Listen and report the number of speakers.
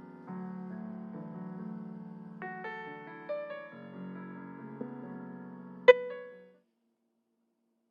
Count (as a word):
zero